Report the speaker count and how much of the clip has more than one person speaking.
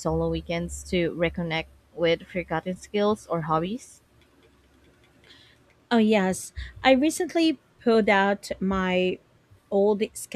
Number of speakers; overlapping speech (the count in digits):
2, no overlap